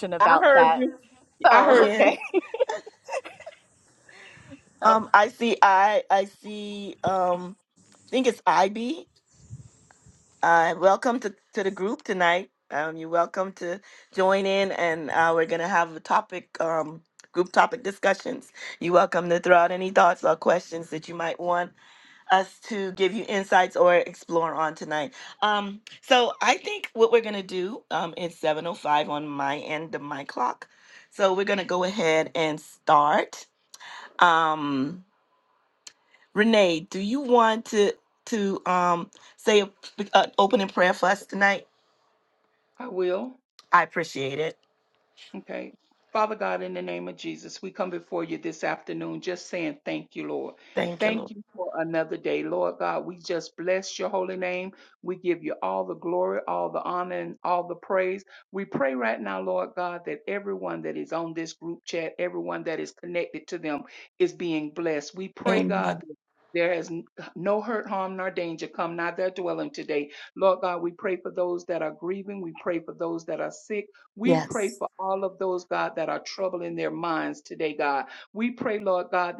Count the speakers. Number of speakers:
three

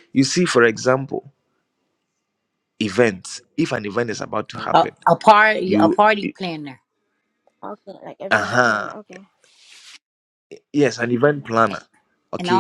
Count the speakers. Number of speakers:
three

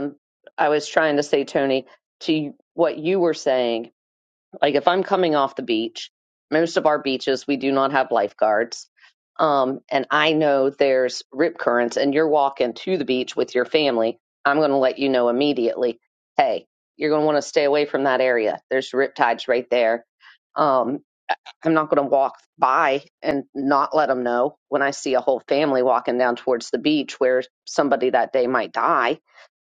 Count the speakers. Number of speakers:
one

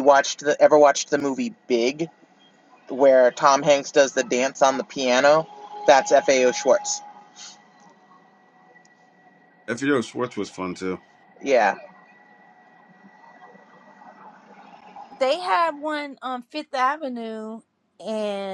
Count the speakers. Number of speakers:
three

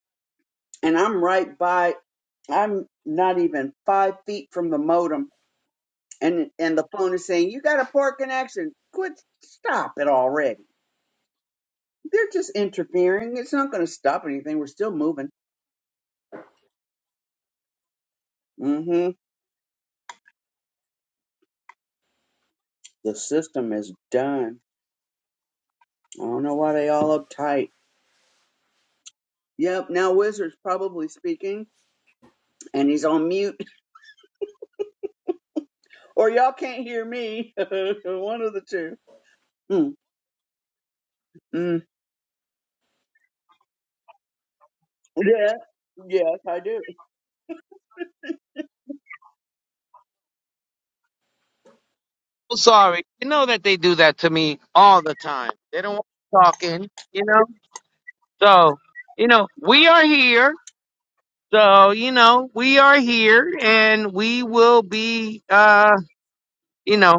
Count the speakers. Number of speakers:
two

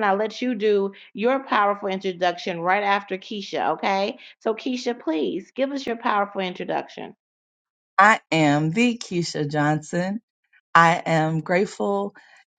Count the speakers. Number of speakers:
two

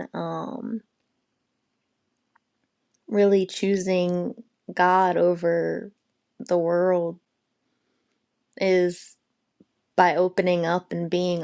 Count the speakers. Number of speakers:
one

